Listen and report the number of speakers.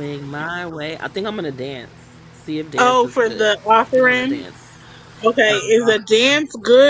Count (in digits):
2